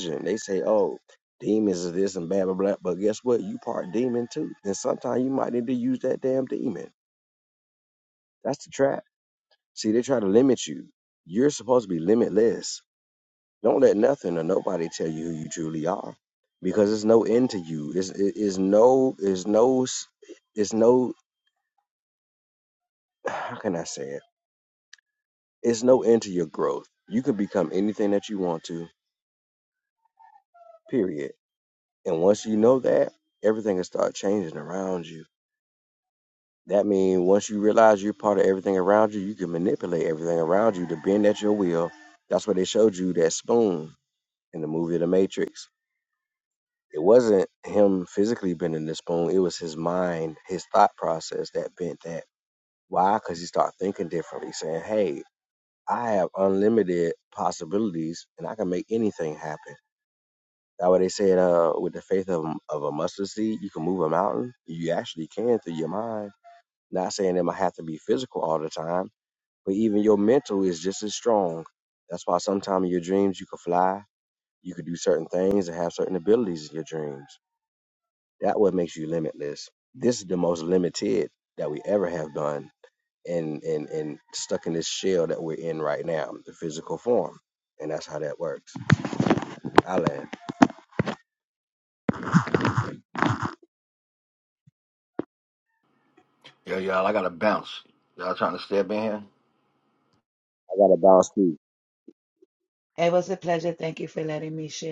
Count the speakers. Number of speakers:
3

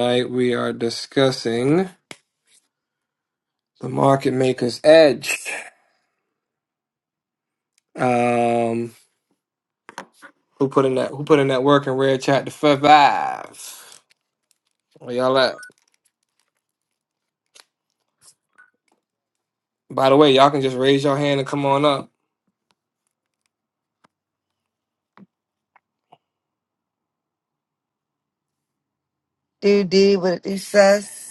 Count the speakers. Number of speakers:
2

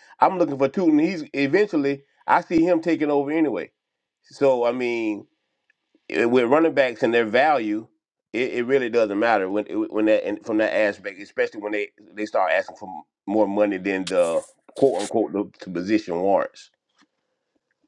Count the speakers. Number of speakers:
1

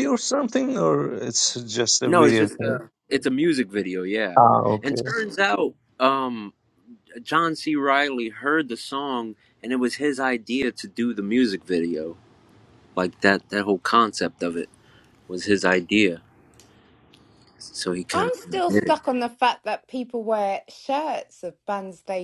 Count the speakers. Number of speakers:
3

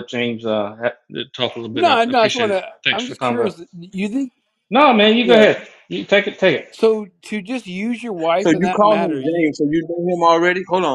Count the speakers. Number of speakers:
3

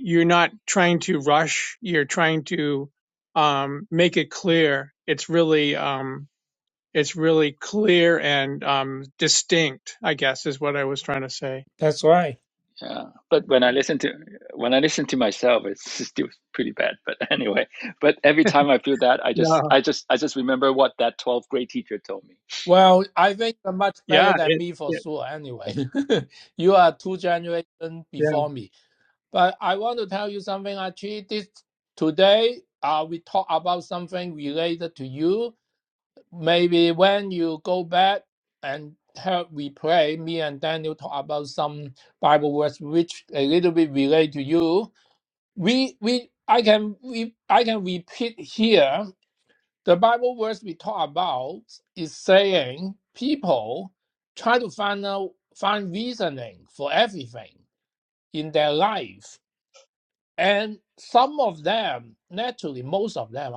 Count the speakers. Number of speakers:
3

